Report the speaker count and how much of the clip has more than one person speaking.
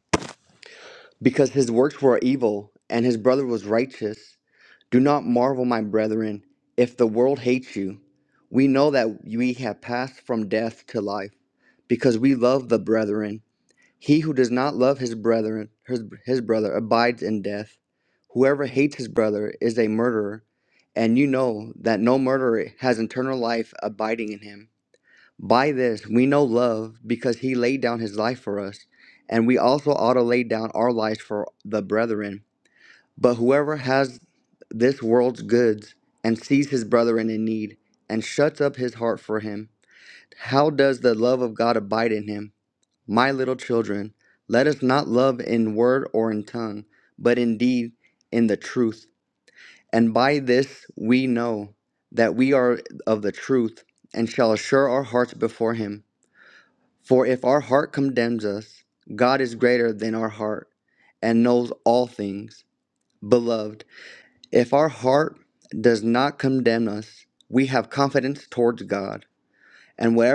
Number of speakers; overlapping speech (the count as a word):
one, no overlap